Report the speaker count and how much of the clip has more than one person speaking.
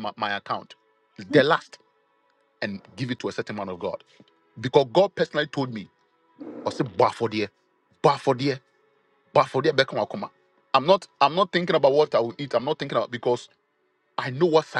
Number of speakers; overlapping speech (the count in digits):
1, no overlap